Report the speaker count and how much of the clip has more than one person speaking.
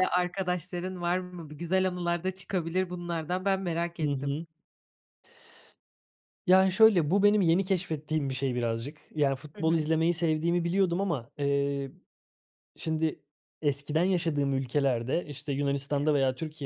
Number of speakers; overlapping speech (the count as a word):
two, about 3%